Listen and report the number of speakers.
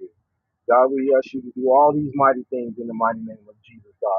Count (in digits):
1